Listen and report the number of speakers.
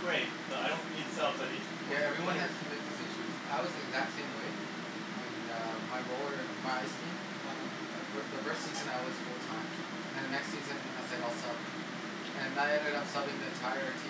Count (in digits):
2